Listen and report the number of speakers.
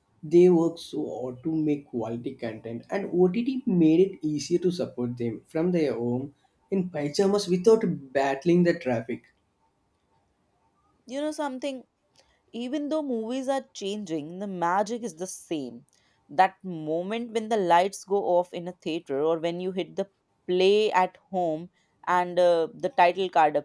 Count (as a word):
two